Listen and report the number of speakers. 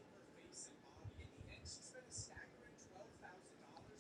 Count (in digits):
0